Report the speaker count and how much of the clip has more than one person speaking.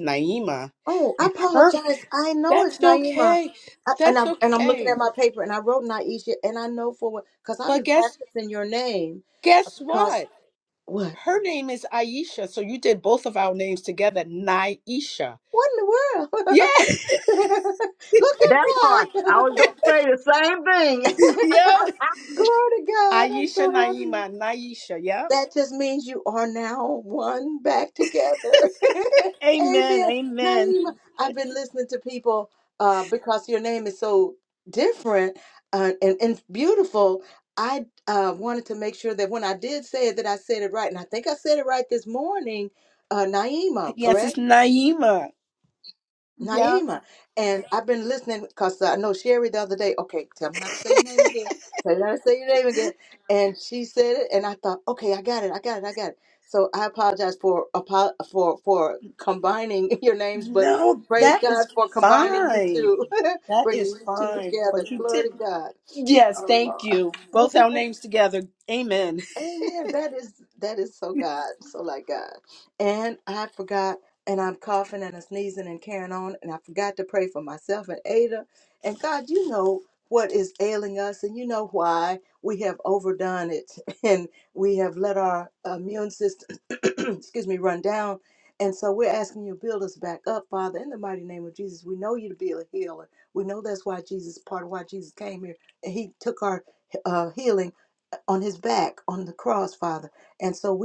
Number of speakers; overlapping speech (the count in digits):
3, about 11%